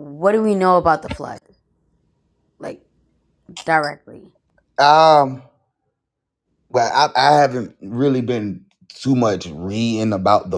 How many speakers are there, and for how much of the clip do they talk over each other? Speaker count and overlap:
two, no overlap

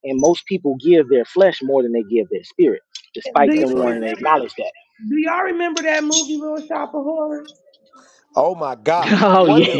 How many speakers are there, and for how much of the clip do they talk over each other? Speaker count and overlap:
three, about 18%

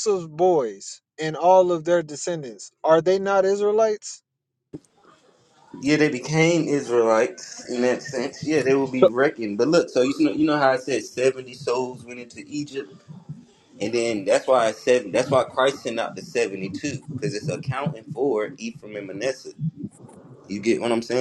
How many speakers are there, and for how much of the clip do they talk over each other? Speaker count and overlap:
two, under 1%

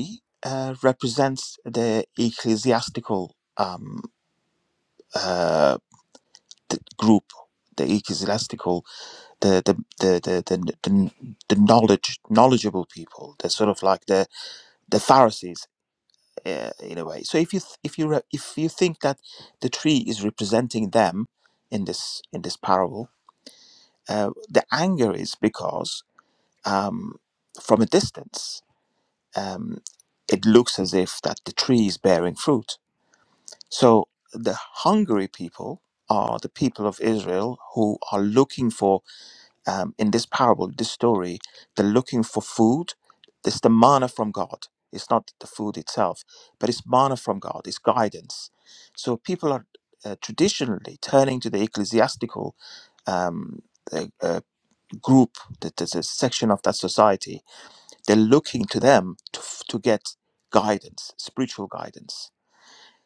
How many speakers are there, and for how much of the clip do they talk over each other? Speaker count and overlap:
one, no overlap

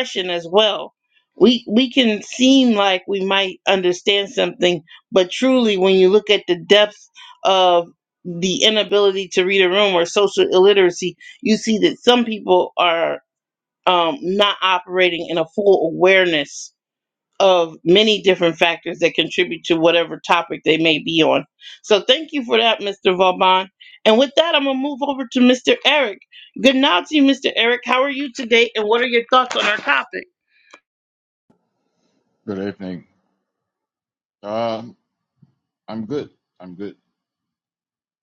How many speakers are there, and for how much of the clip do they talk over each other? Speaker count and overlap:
two, no overlap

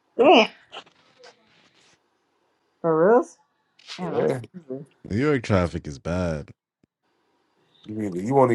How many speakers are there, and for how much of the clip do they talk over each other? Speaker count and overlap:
three, about 4%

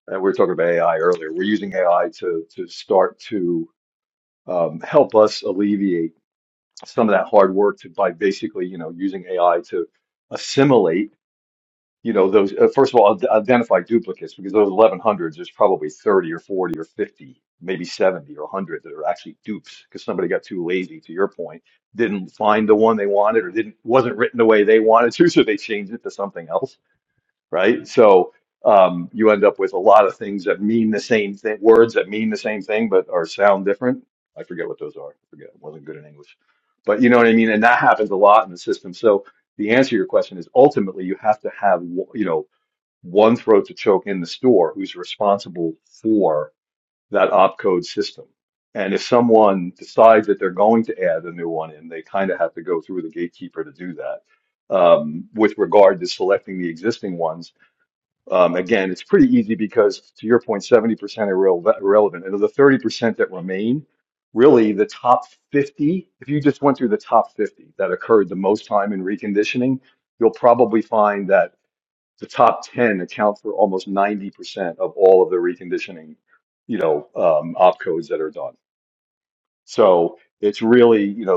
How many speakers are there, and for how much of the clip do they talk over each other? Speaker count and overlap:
one, no overlap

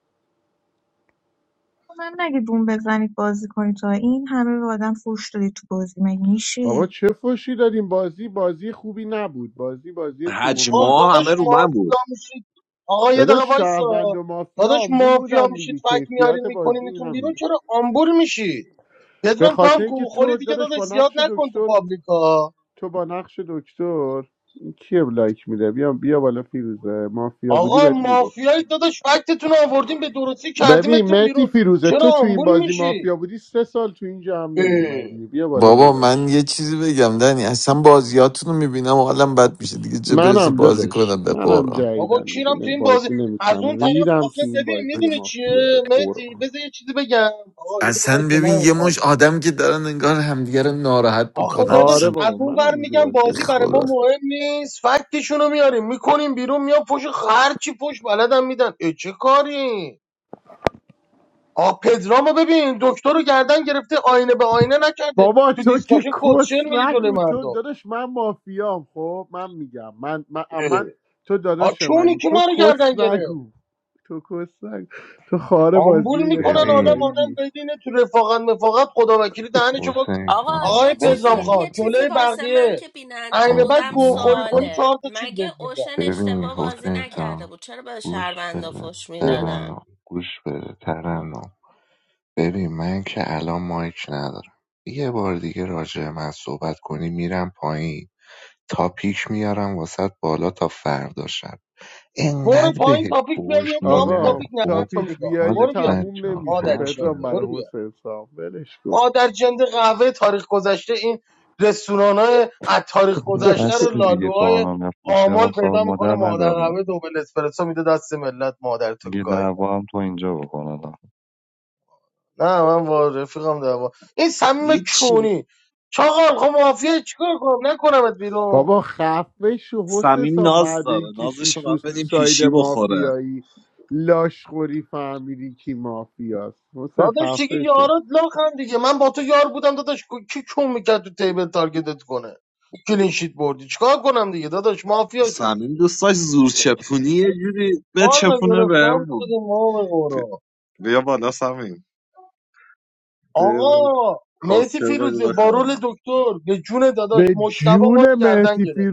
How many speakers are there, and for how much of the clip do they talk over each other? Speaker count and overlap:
eight, about 34%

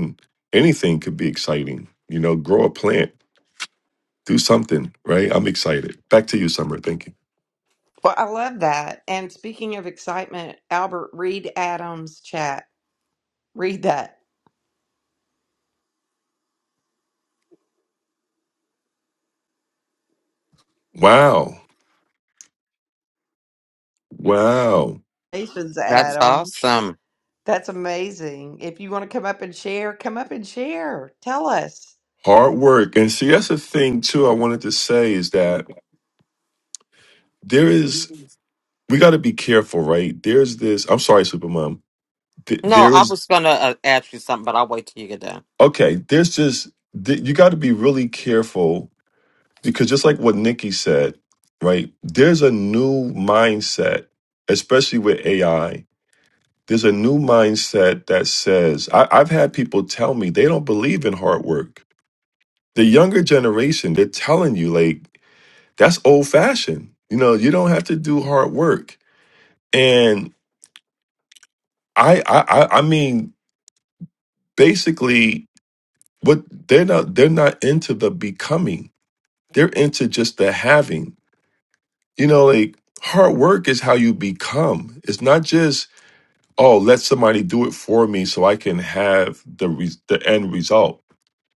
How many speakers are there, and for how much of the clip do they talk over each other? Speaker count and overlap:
three, about 1%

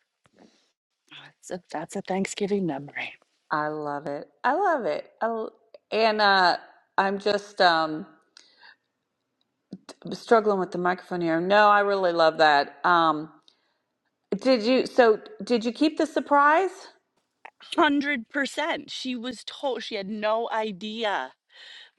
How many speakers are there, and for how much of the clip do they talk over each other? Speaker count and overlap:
two, no overlap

